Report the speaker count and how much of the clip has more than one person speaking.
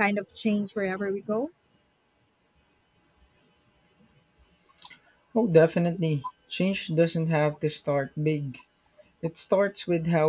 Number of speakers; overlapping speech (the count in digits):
2, no overlap